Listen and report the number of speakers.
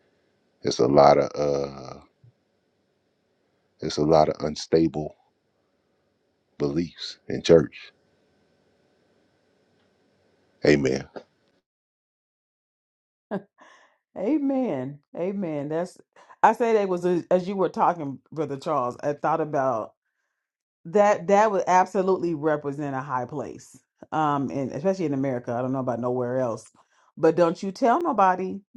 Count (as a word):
two